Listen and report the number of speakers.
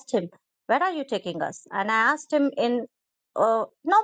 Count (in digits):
1